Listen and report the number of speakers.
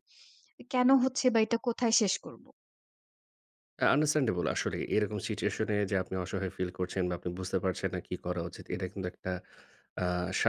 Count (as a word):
two